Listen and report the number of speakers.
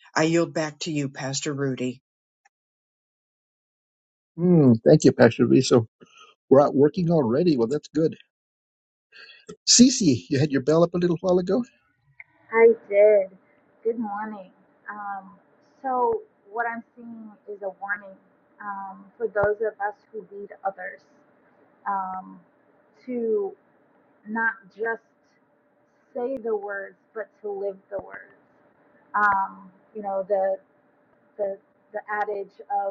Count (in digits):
3